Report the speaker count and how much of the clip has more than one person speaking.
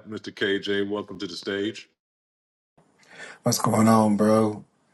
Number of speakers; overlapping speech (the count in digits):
2, no overlap